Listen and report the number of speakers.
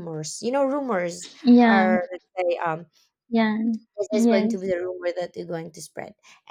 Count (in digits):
2